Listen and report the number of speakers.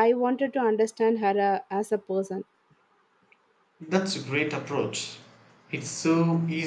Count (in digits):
2